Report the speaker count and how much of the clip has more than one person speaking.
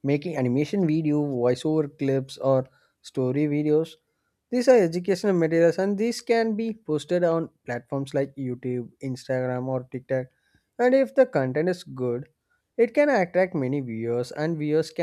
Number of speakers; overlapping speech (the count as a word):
one, no overlap